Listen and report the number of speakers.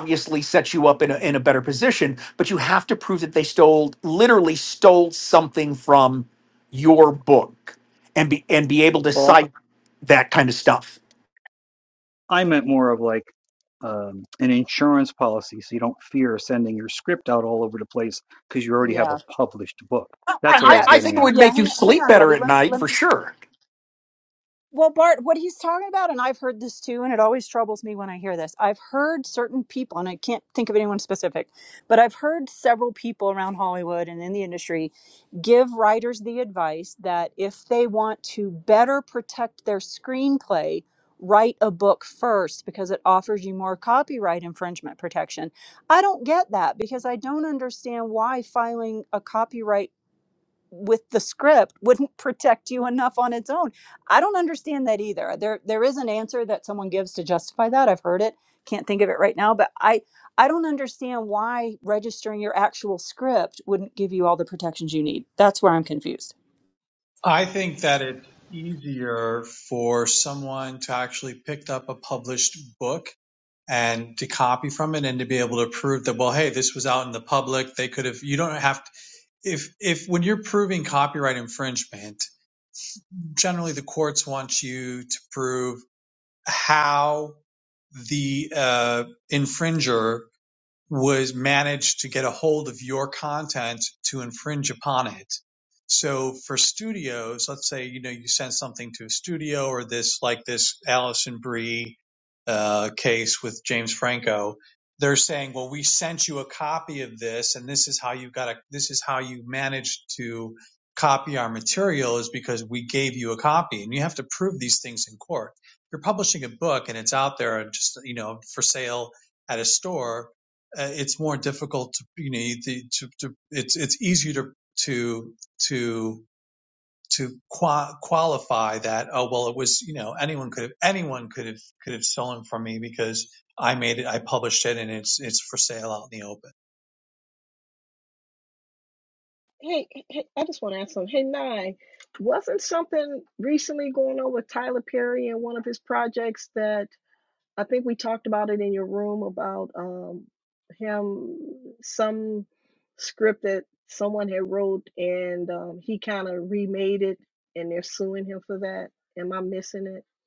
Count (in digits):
5